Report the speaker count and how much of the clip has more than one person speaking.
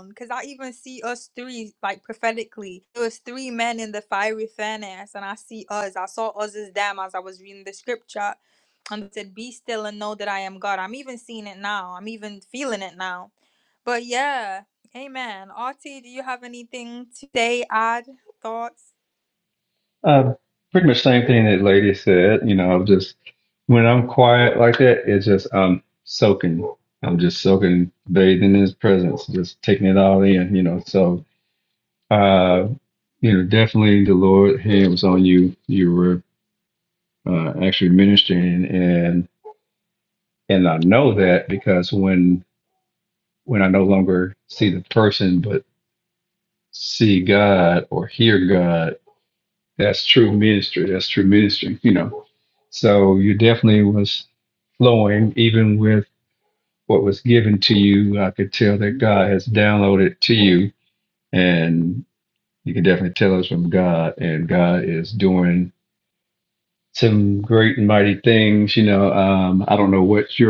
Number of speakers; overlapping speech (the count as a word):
two, no overlap